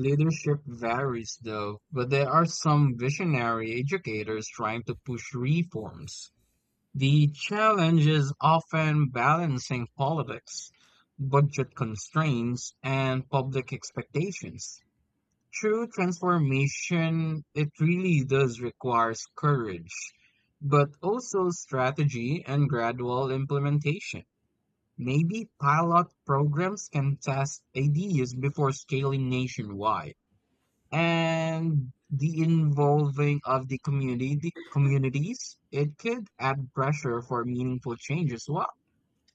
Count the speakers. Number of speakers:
1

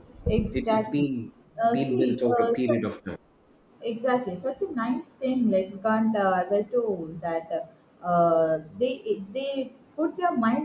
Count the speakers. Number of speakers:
2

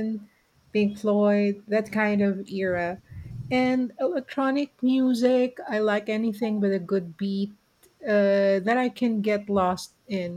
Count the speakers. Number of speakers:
1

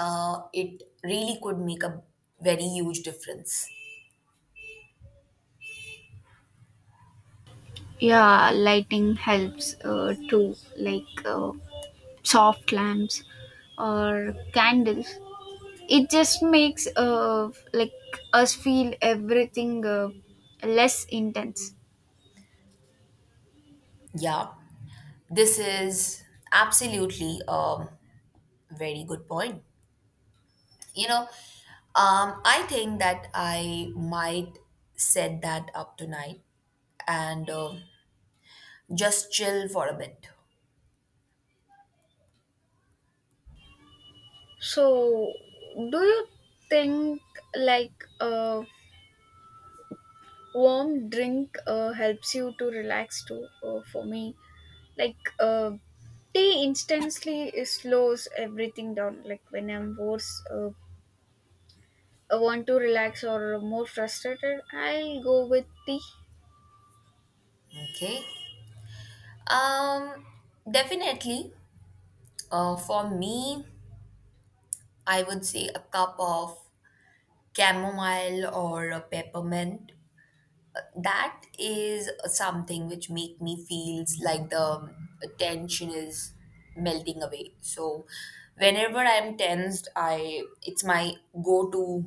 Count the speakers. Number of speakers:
2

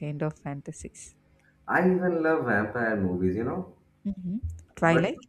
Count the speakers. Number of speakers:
2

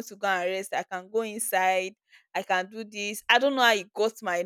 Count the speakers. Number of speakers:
1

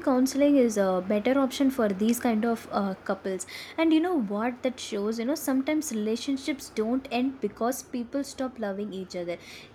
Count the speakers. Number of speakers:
1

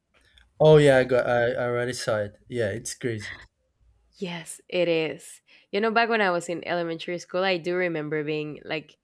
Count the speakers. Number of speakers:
2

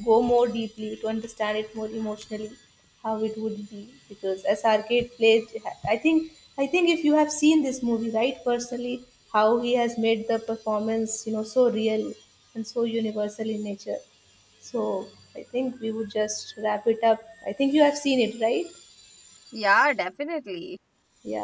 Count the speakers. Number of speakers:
2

